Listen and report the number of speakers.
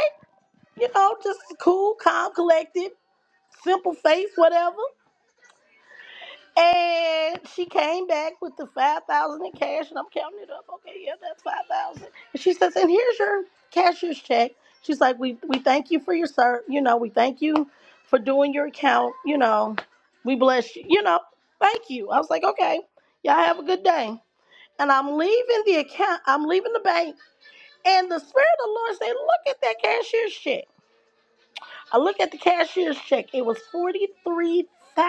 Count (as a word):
one